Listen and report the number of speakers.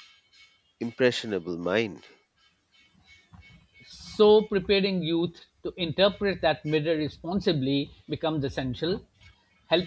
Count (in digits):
2